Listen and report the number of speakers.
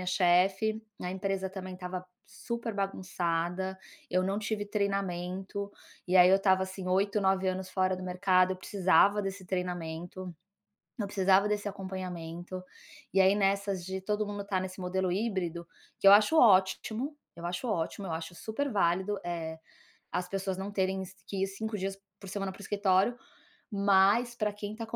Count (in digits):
1